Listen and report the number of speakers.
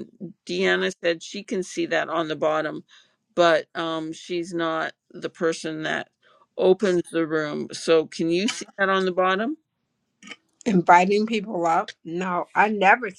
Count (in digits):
2